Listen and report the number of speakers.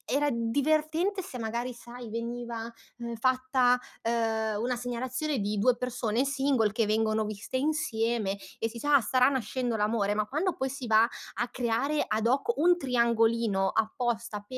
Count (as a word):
one